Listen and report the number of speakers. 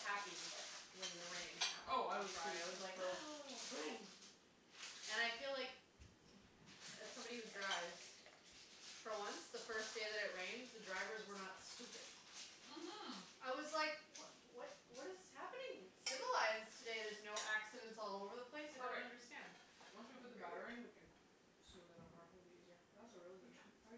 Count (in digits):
2